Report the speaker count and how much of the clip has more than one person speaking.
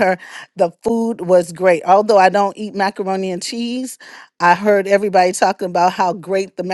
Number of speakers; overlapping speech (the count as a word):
one, no overlap